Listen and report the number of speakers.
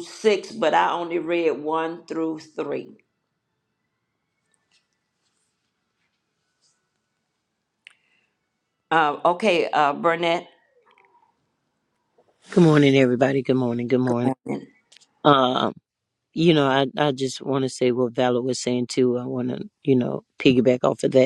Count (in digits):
2